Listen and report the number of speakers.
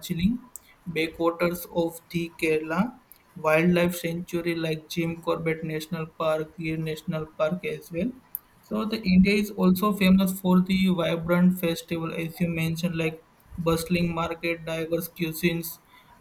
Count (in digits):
1